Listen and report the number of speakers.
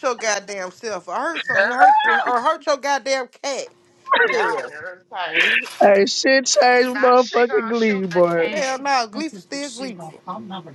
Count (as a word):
three